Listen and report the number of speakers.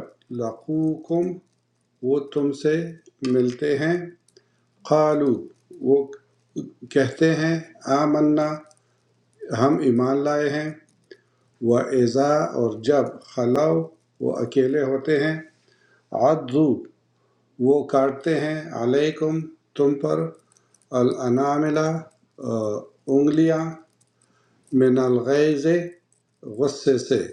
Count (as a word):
one